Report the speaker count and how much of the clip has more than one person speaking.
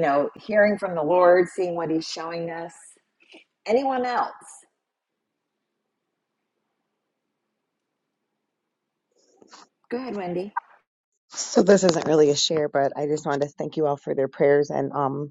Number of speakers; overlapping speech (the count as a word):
two, no overlap